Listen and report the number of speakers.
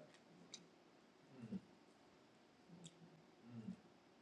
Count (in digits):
0